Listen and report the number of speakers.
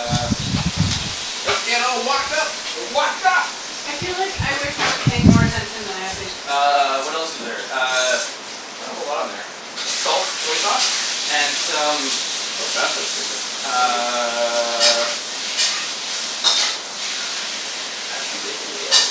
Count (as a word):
three